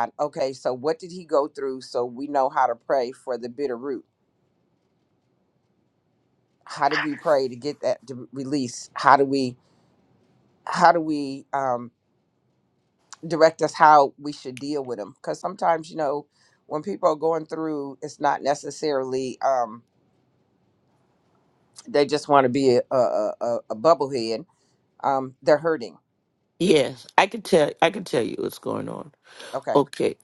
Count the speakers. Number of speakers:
two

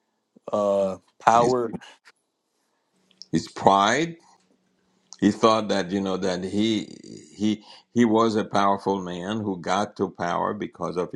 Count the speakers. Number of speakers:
two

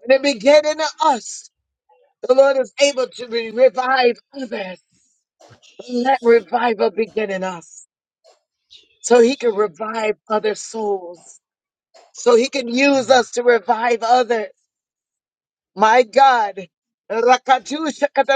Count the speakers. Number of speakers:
one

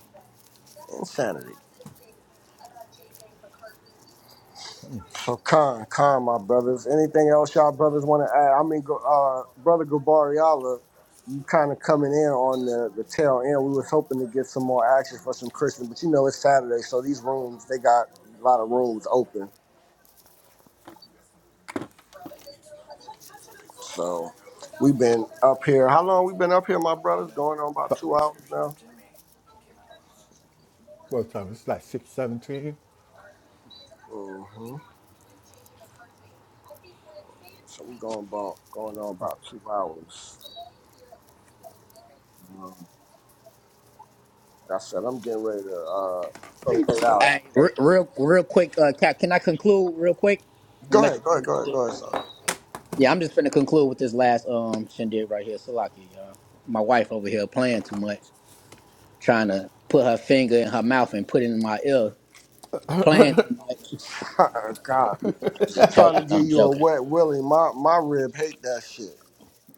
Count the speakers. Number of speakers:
three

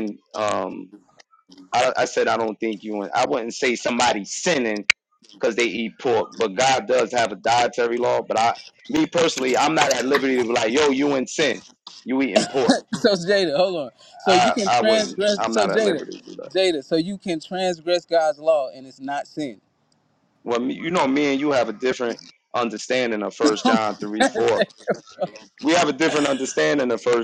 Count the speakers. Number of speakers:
two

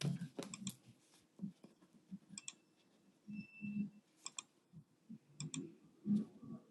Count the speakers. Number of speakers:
zero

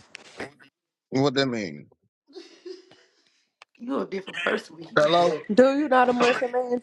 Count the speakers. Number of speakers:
three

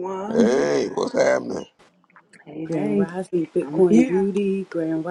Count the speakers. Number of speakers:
three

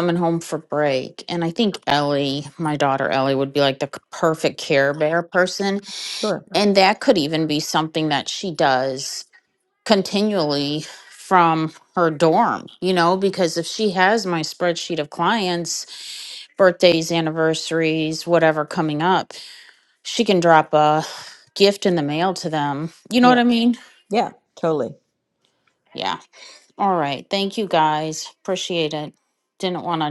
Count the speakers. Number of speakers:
two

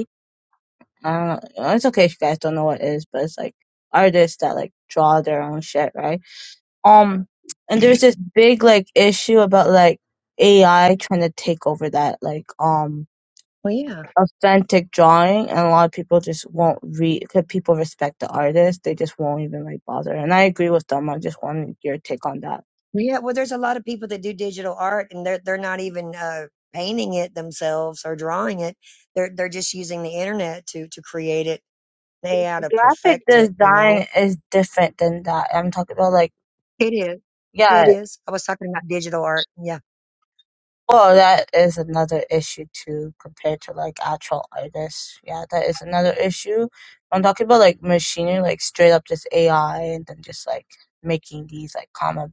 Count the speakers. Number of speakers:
two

